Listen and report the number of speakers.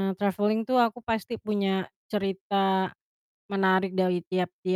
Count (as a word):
one